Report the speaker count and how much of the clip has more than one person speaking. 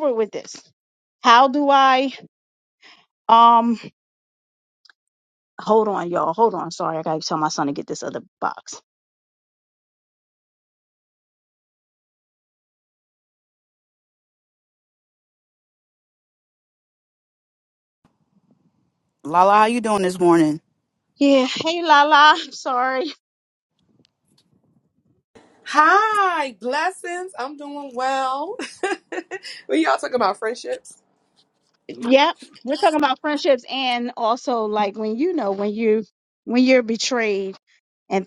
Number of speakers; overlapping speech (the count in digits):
3, no overlap